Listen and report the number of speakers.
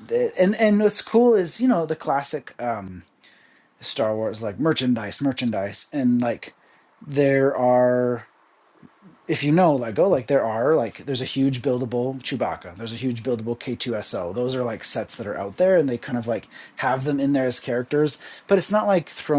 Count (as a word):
one